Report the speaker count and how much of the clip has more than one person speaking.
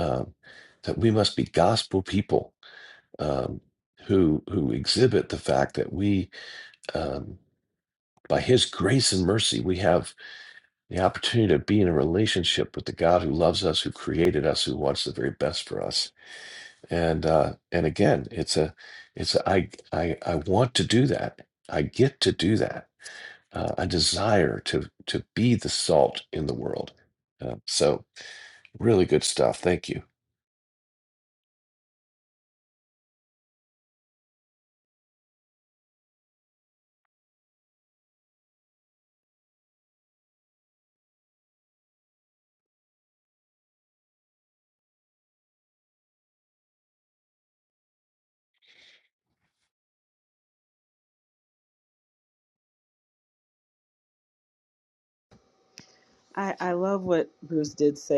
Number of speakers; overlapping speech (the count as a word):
two, no overlap